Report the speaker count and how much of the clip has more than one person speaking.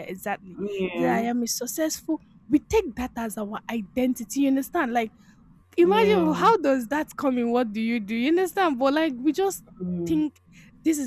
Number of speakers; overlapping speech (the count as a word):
two, about 10%